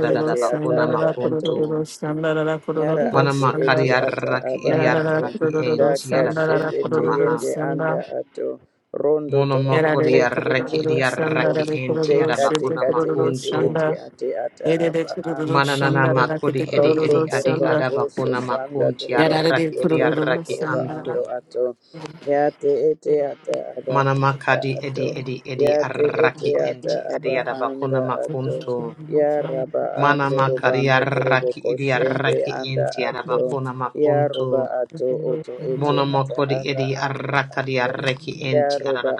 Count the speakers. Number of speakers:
3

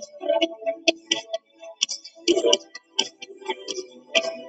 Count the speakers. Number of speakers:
0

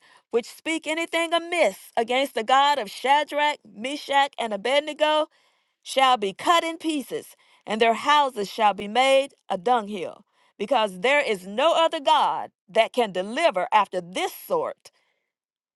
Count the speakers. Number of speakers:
1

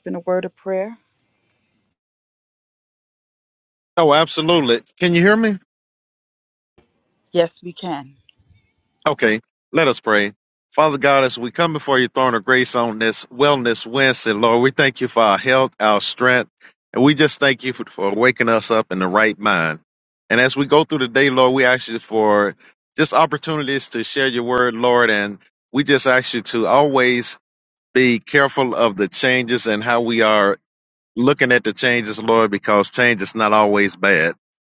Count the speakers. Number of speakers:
2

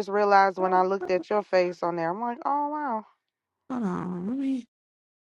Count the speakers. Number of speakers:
2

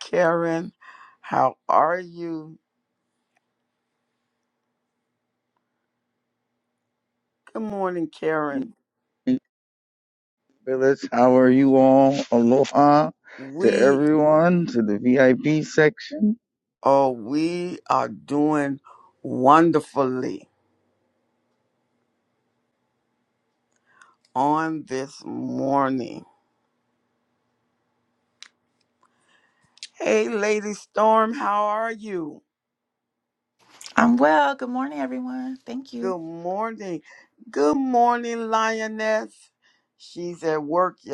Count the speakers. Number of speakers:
3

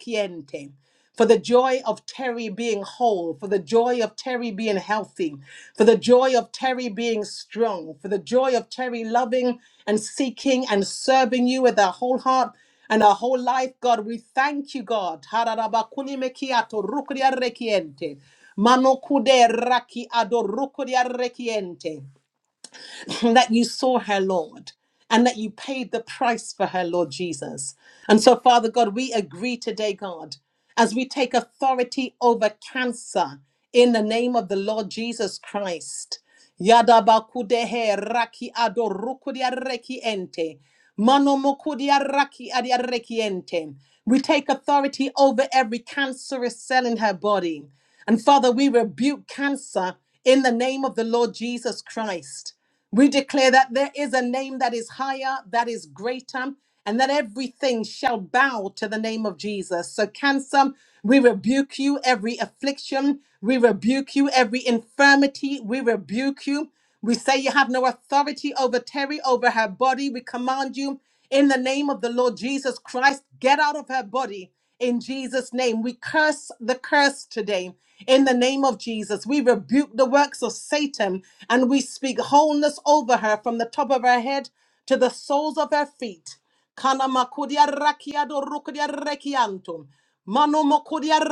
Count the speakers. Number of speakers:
1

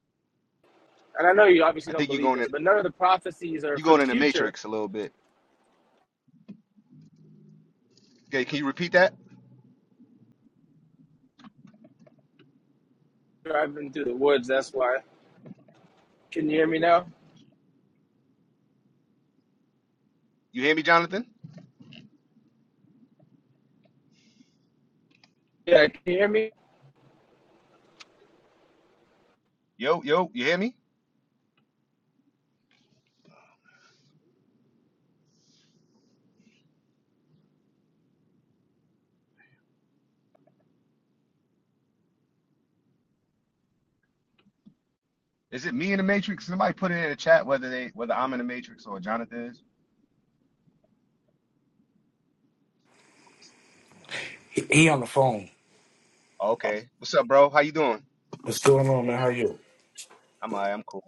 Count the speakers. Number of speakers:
3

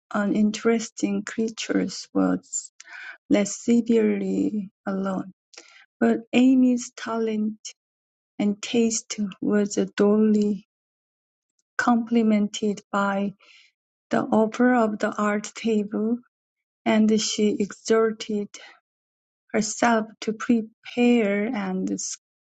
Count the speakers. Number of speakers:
1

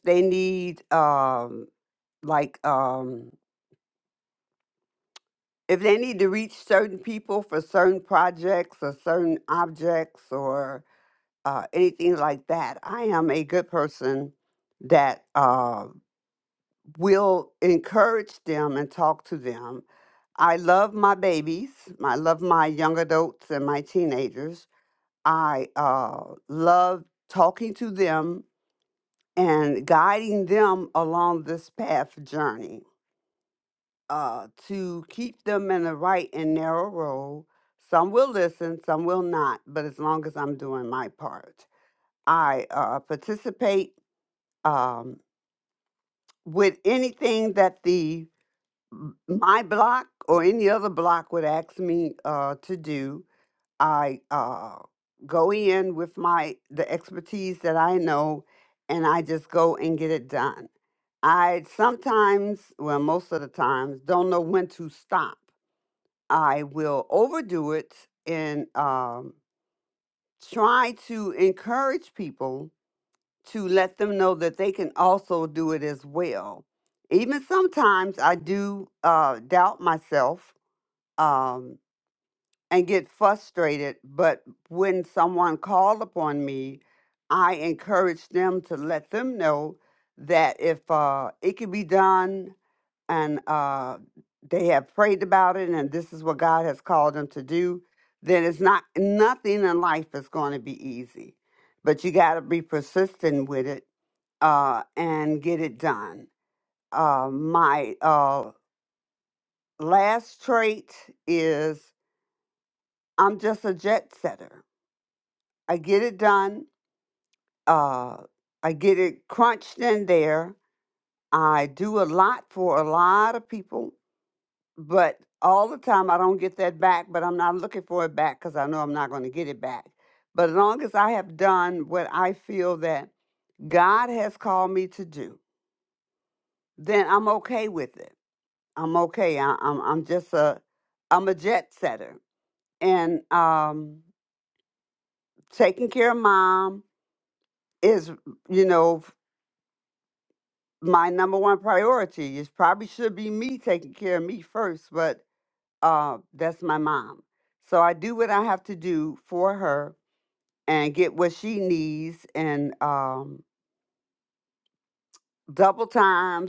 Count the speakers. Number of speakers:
1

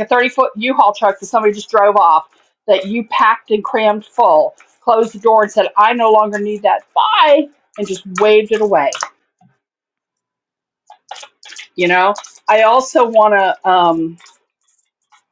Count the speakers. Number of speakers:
1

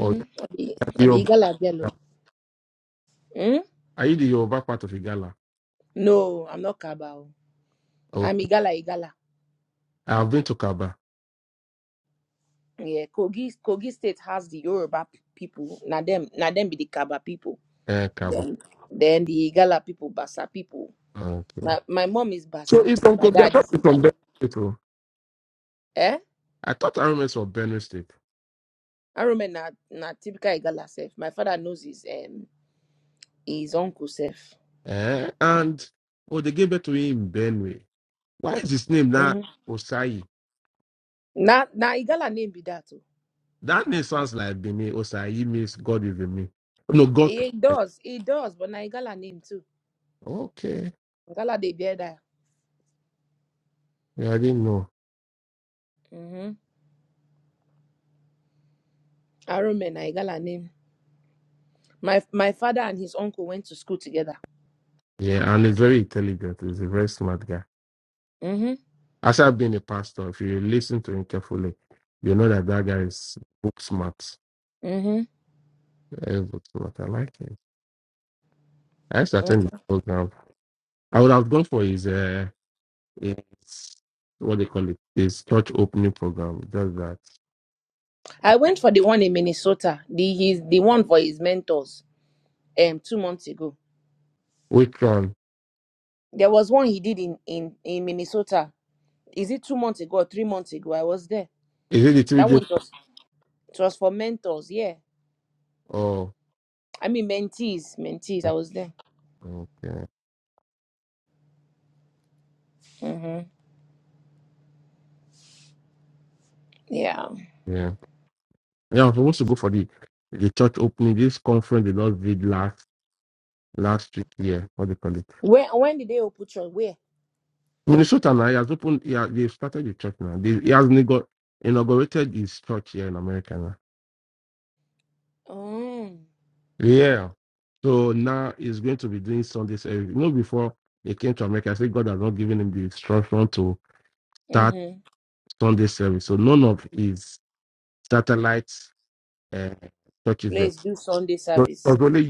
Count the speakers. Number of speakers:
2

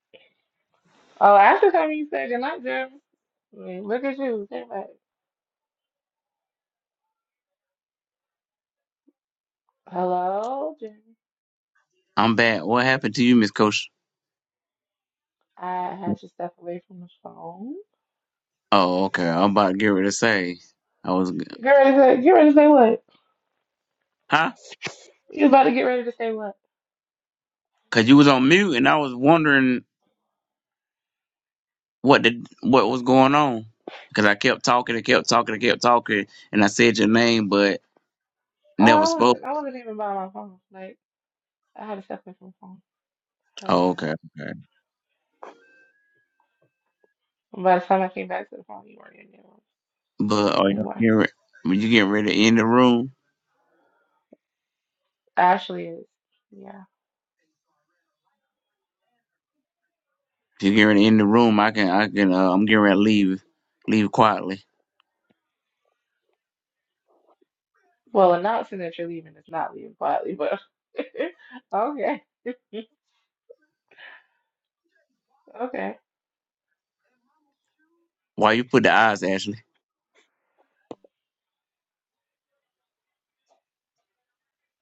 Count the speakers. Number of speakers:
2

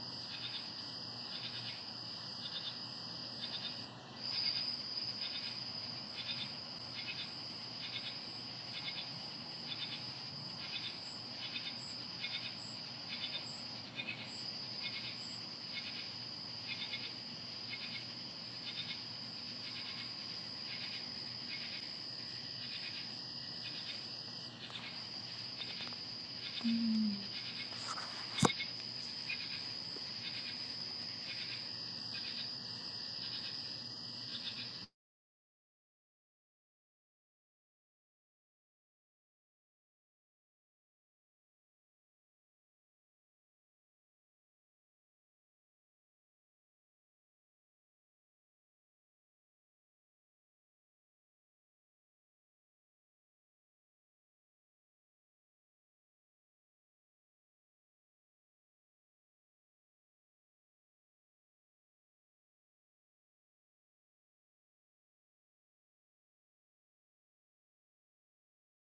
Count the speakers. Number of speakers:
0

